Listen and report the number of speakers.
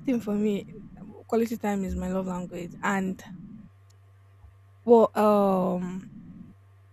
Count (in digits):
1